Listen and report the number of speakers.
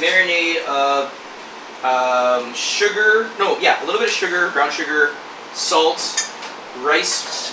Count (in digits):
1